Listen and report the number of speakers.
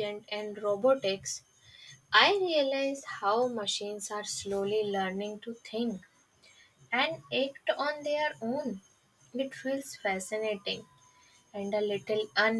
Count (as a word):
one